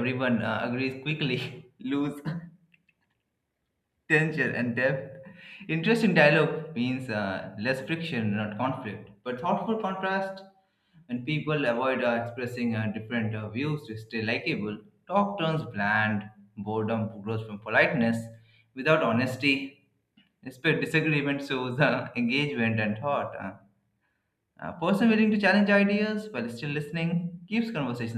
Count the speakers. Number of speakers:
one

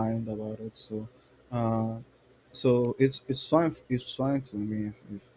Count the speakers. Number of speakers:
one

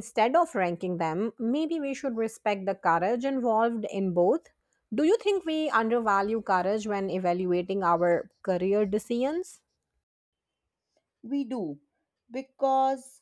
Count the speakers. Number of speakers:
two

